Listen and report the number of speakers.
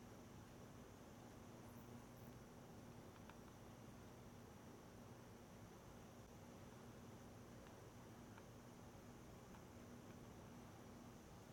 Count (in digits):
0